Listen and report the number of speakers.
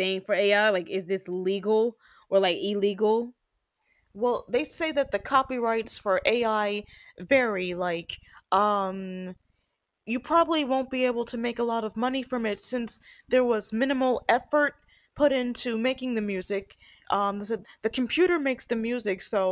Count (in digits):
2